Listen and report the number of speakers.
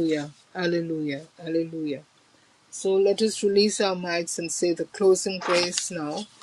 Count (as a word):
one